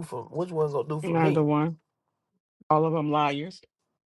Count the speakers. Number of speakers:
two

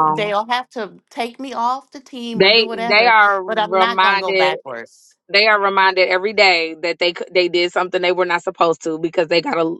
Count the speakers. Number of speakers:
two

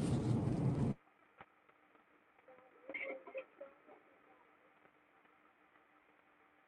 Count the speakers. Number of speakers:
zero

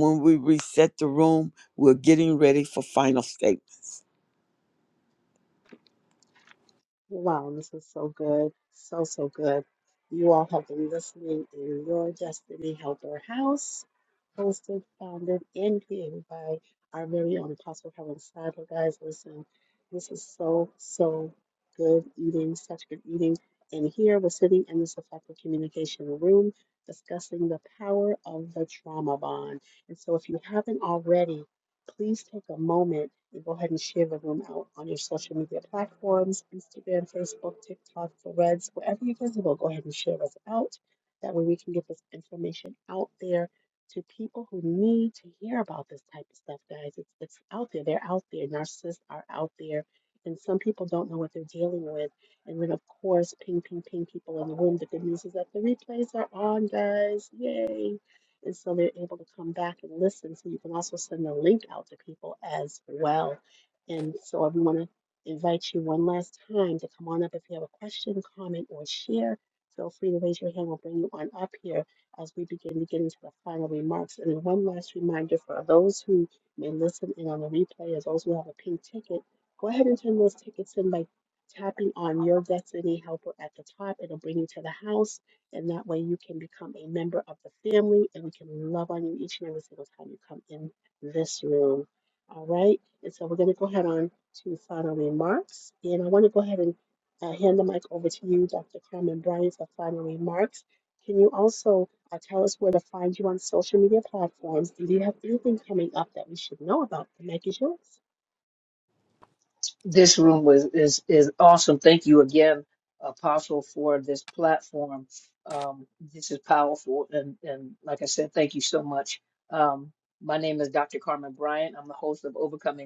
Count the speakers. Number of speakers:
three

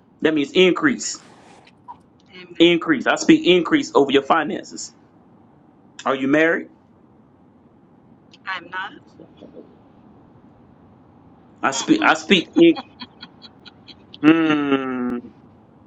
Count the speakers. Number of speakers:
two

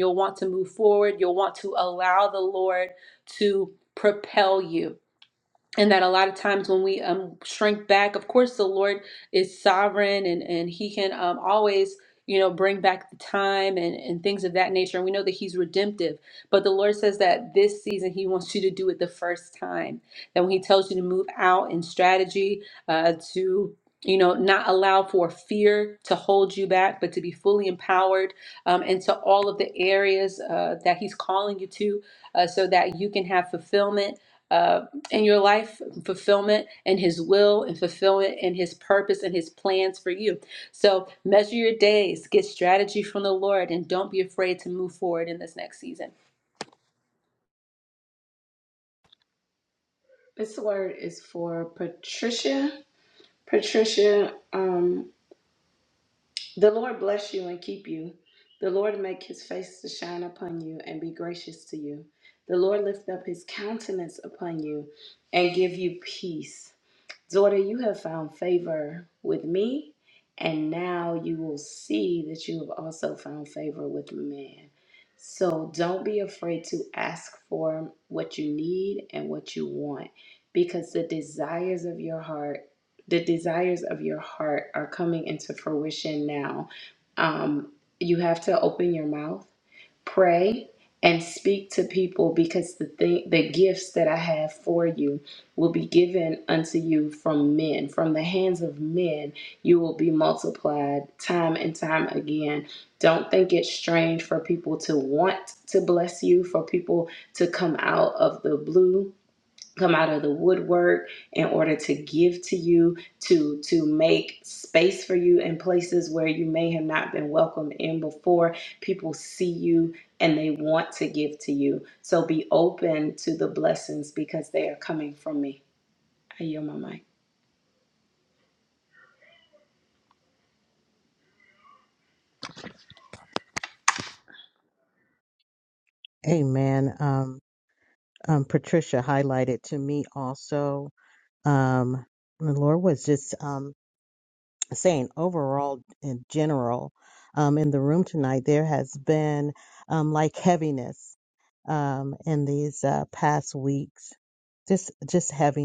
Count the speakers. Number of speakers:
three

